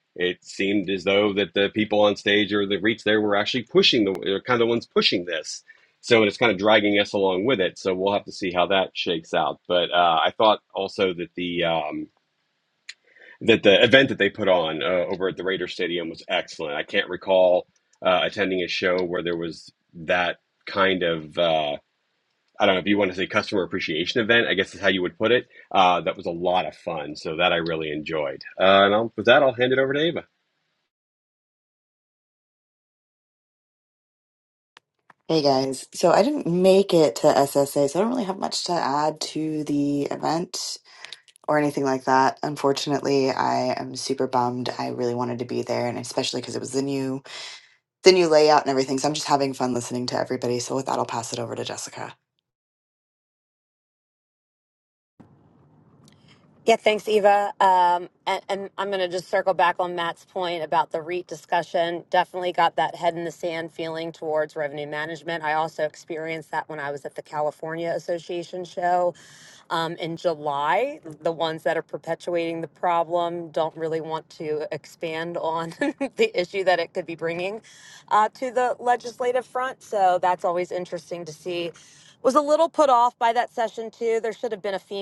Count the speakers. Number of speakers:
3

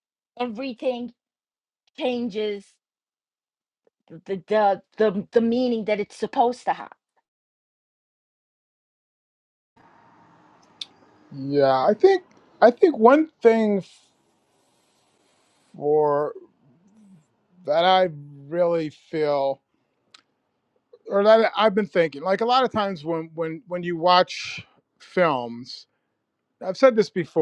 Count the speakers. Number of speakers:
2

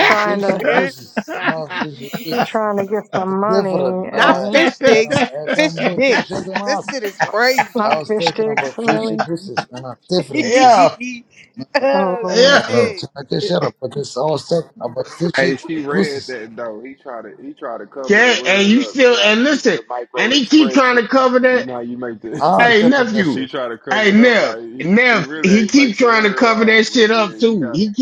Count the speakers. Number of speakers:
5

